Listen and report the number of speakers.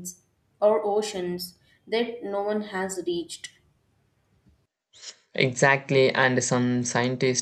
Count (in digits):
2